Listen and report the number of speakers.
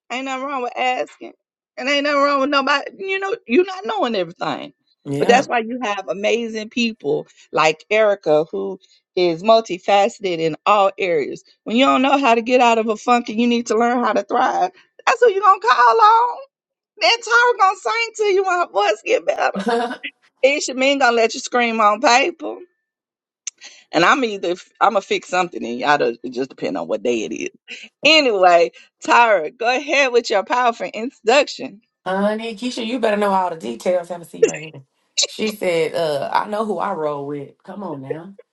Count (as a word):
two